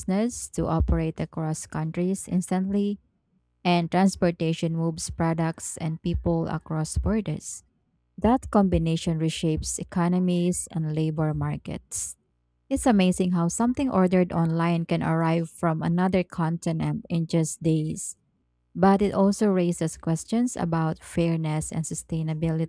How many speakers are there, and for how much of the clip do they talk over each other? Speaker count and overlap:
1, no overlap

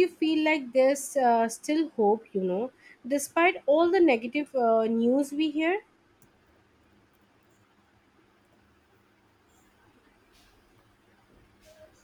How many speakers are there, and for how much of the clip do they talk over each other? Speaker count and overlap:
1, no overlap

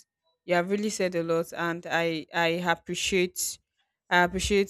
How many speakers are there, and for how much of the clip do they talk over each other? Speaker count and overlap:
1, no overlap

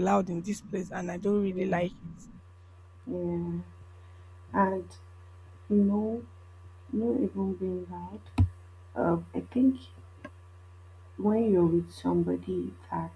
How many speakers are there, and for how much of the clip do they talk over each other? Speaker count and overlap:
2, about 2%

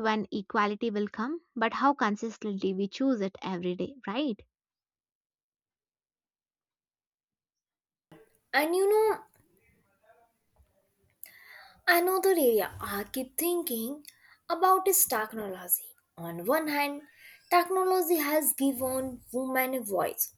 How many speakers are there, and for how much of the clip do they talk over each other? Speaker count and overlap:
2, no overlap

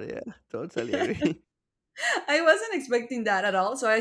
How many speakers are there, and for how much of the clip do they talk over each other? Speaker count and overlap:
2, no overlap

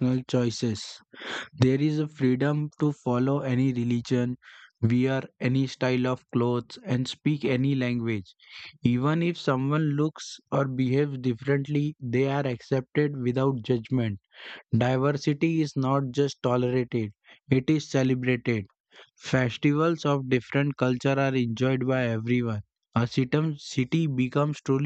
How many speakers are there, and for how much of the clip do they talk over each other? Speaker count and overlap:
1, no overlap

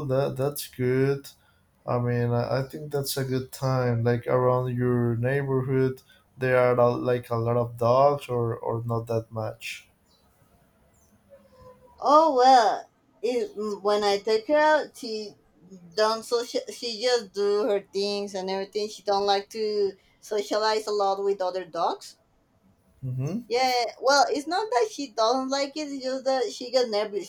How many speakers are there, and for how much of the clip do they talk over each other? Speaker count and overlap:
2, no overlap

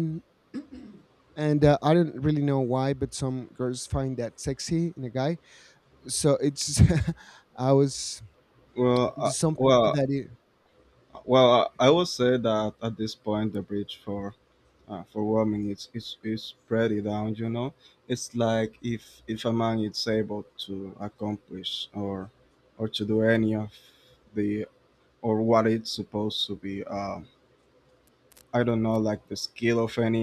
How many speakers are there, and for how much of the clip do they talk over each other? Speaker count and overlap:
2, about 3%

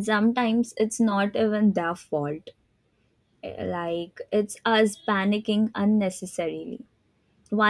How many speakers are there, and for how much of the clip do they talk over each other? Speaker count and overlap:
1, no overlap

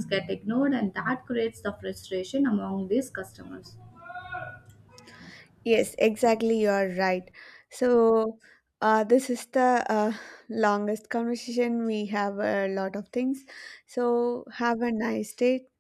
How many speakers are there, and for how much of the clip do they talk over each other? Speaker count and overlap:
2, no overlap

